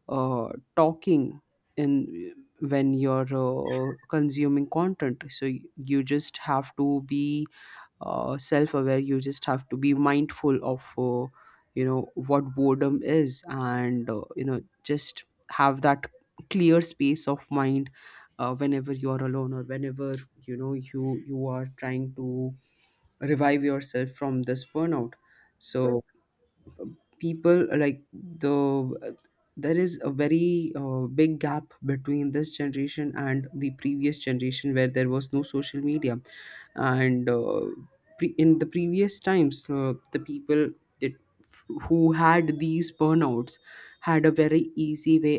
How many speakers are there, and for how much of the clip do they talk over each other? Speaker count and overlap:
one, no overlap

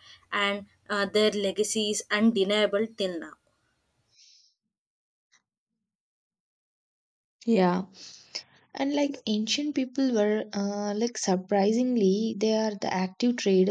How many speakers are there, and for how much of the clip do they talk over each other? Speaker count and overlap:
two, no overlap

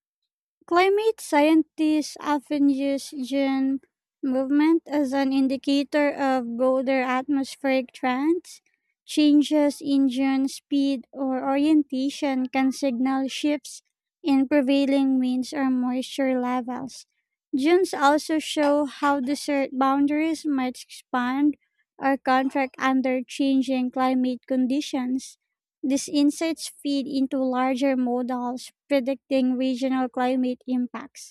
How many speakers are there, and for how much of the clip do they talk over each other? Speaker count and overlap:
one, no overlap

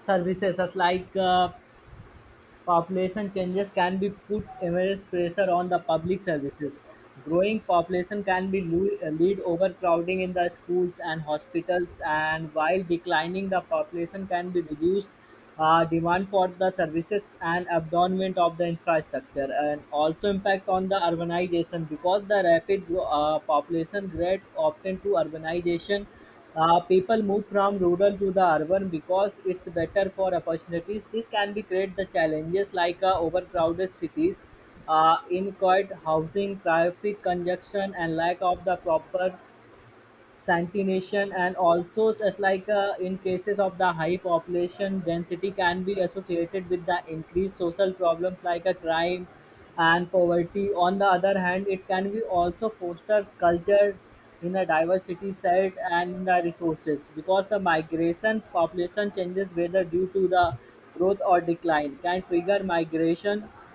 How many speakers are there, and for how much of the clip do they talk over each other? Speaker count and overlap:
one, no overlap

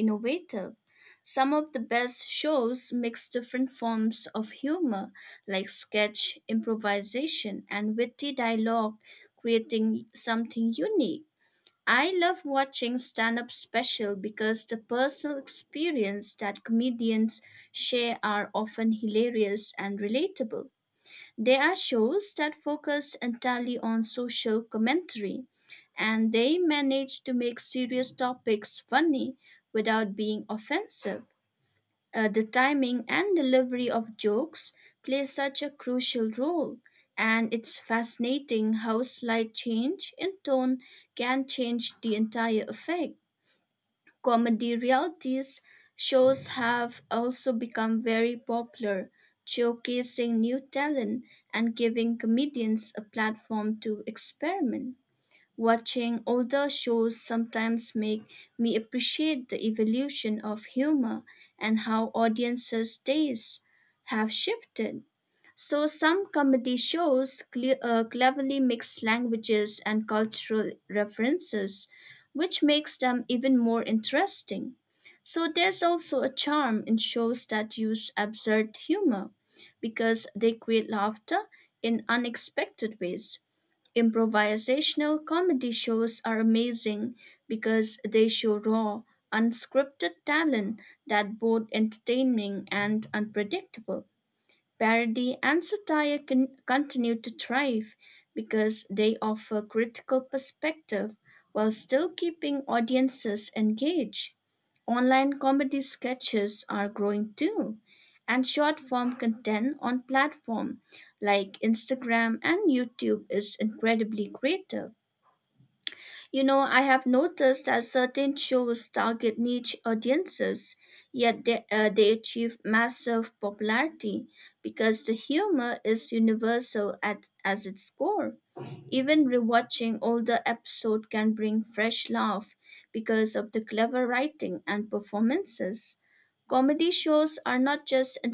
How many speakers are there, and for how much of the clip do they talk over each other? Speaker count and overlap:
one, no overlap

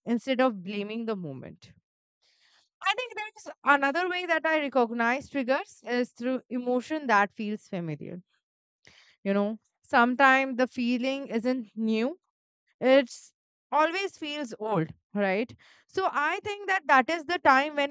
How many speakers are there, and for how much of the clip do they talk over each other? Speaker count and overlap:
one, no overlap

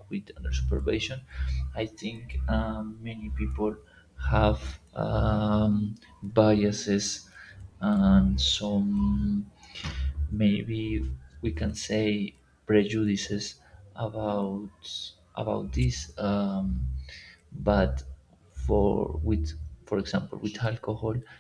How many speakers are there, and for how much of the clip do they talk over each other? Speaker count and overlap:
one, no overlap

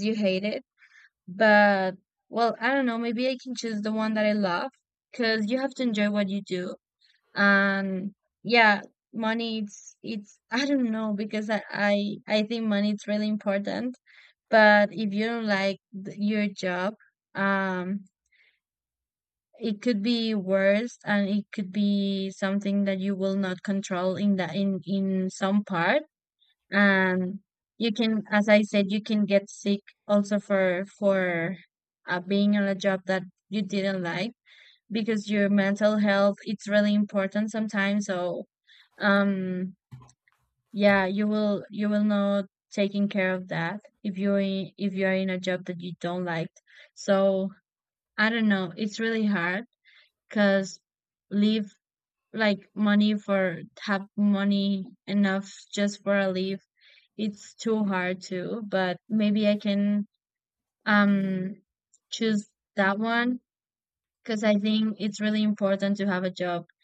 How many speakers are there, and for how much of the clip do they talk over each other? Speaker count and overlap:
one, no overlap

